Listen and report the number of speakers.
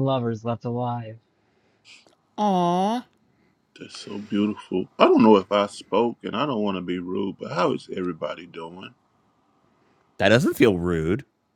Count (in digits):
3